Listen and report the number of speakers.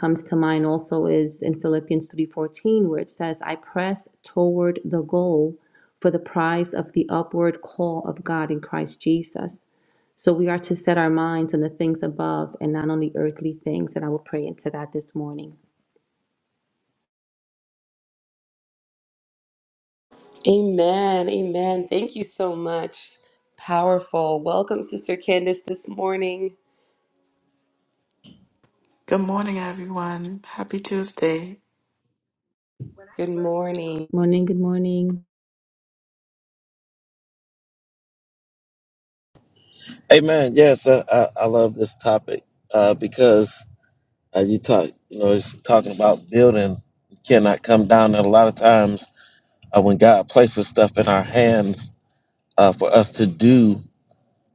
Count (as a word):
four